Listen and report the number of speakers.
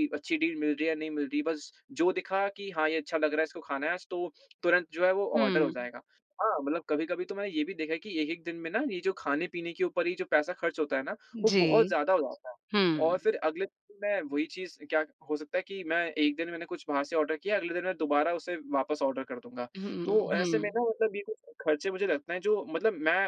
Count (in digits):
2